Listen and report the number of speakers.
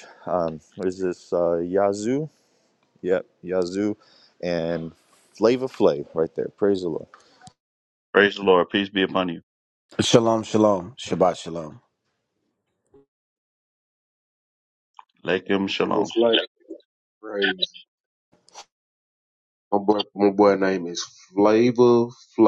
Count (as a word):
four